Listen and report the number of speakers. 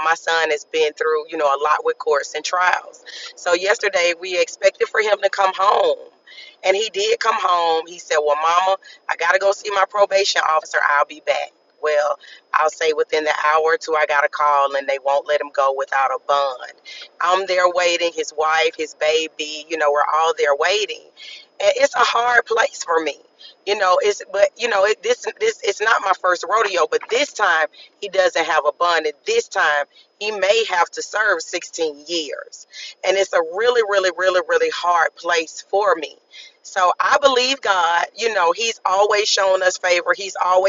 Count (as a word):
one